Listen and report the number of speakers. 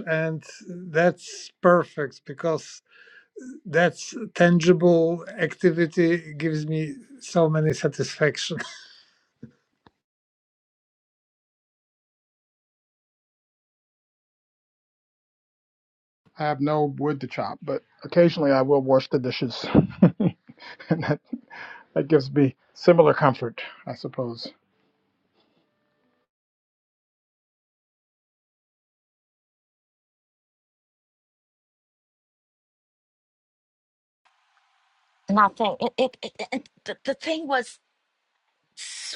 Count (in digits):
3